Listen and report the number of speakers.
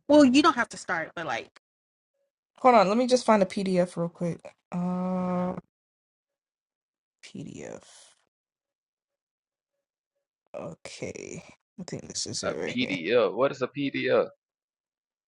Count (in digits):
3